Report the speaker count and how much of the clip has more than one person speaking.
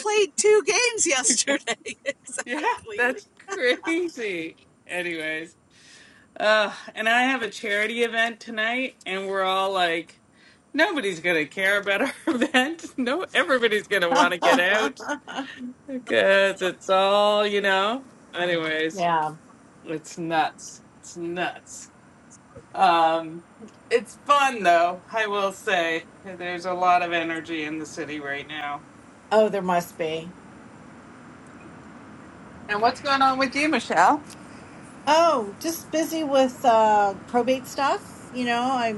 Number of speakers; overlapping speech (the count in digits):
3, about 1%